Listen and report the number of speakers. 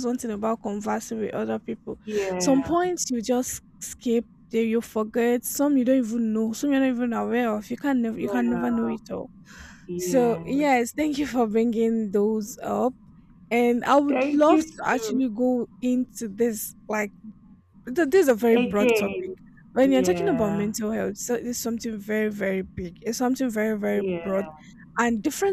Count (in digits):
2